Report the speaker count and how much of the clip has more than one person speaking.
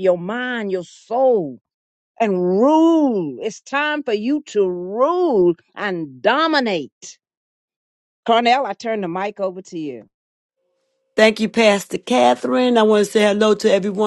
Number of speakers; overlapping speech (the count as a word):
two, no overlap